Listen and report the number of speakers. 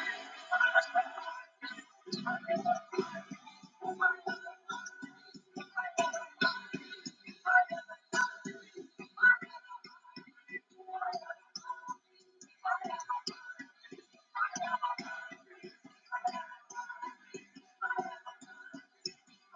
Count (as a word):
zero